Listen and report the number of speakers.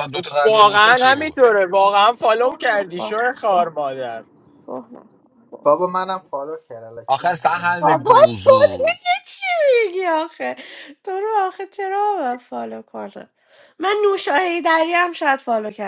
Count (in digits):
4